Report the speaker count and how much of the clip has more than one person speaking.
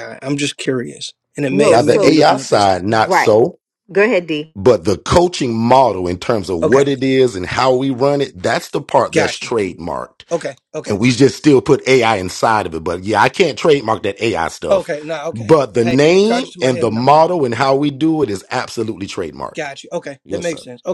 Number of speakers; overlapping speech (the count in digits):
3, about 21%